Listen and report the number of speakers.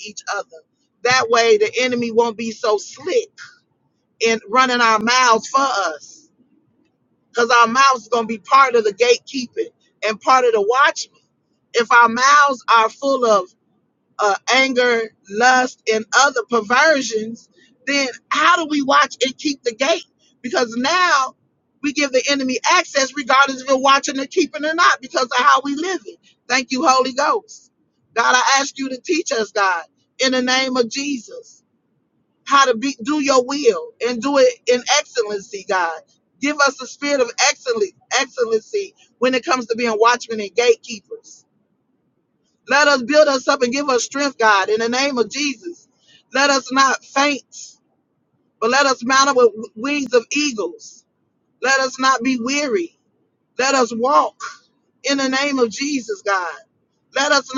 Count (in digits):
1